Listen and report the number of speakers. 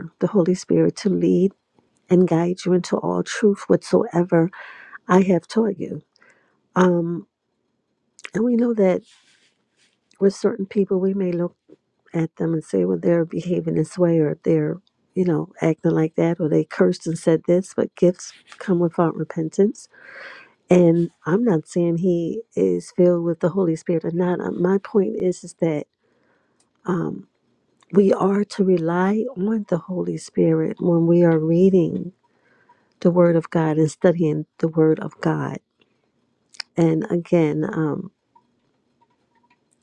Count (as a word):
one